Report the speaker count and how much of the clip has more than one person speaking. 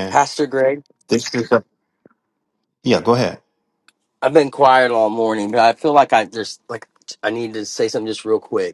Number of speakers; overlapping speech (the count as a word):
two, about 1%